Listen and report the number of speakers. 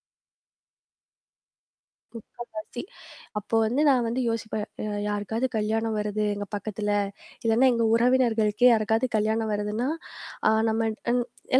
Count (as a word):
one